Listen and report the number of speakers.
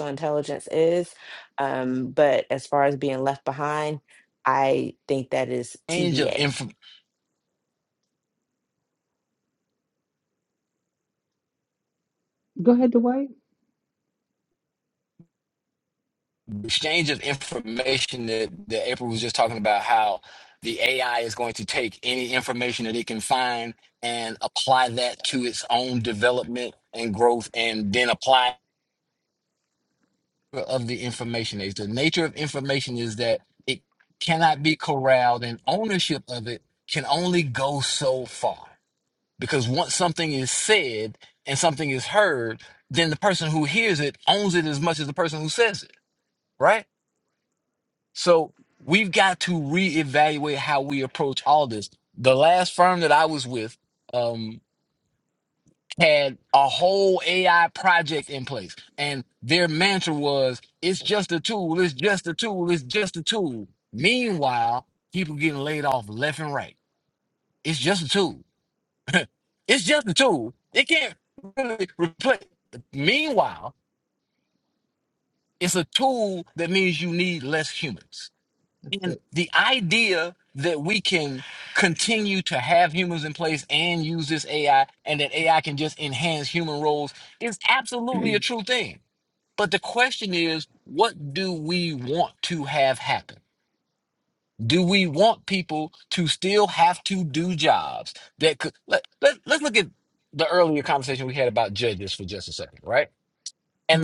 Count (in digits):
3